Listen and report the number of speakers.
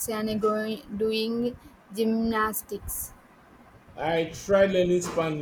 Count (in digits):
2